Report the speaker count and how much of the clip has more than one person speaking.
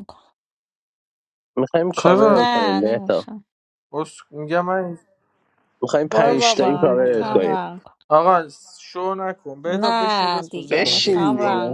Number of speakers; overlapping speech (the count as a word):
three, about 41%